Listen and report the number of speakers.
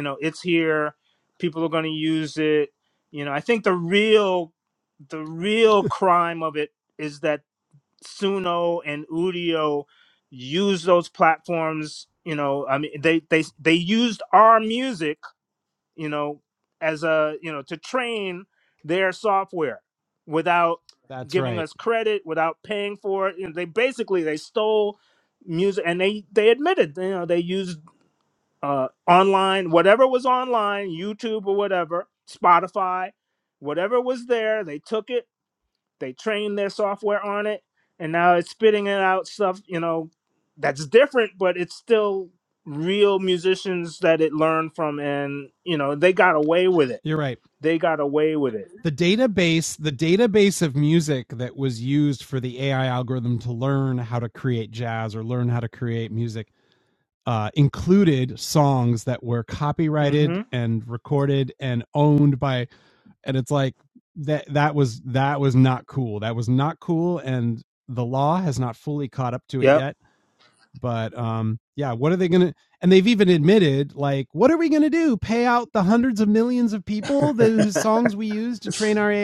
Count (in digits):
2